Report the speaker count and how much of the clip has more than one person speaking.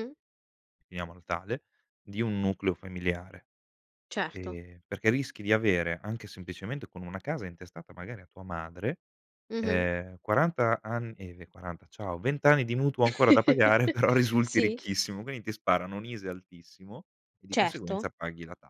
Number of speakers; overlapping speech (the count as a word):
two, about 7%